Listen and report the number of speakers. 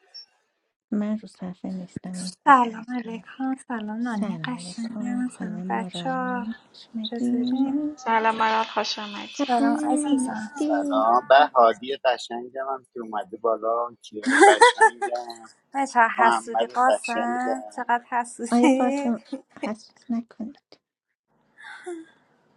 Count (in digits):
4